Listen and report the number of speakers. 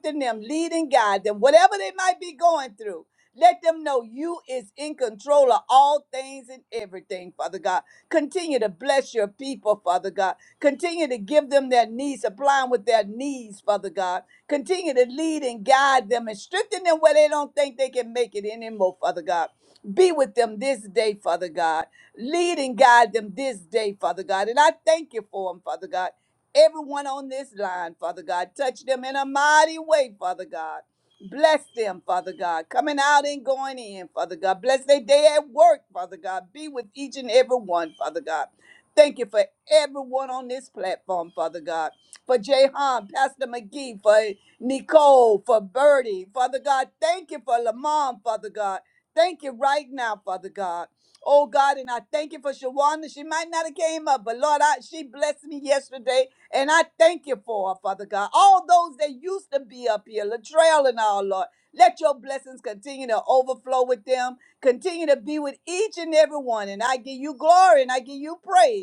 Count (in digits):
1